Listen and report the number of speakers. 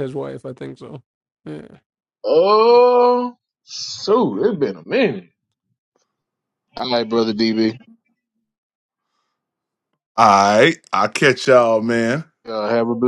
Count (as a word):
three